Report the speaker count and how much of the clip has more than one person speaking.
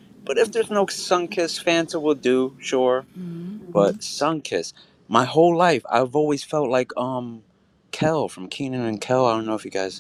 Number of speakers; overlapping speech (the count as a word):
one, no overlap